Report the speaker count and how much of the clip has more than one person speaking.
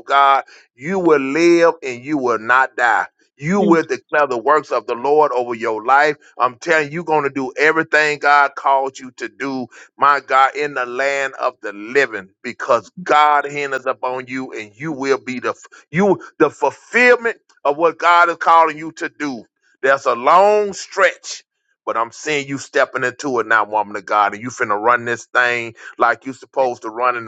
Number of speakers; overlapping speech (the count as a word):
one, no overlap